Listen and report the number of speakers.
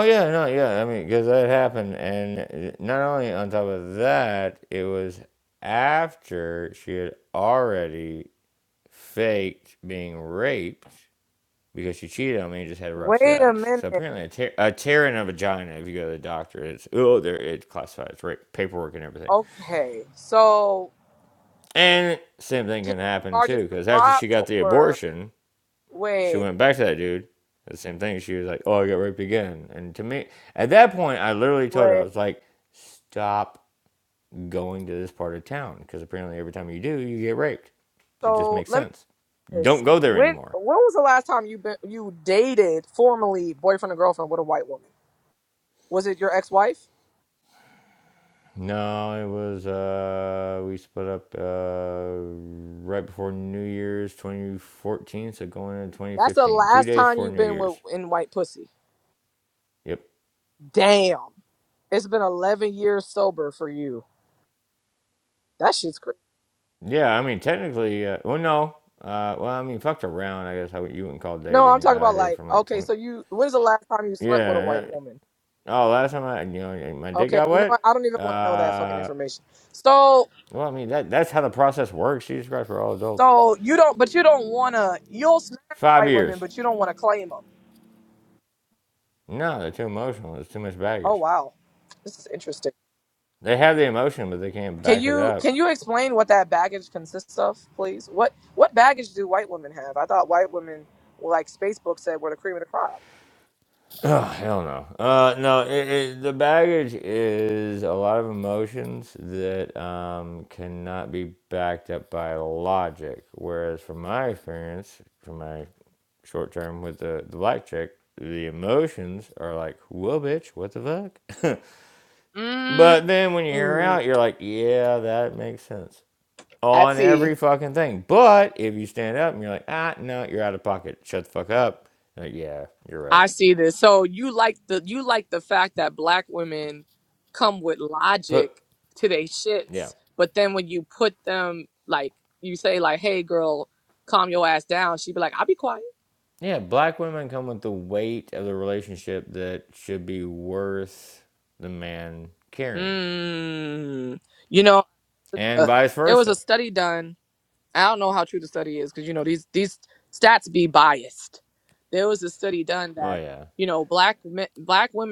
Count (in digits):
2